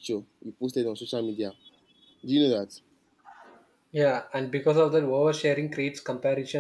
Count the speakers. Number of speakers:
2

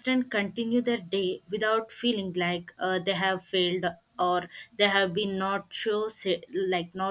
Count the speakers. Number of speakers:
1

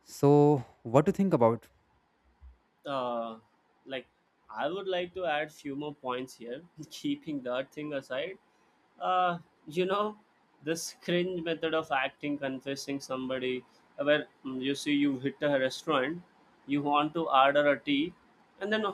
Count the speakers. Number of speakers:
2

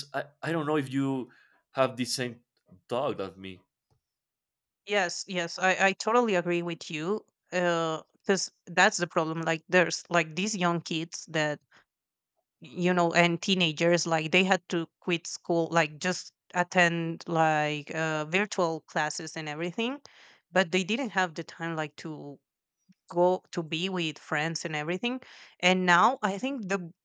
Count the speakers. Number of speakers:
2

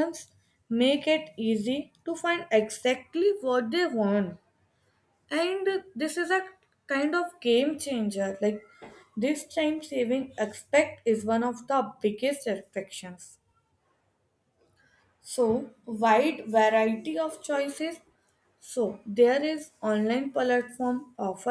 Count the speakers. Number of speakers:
1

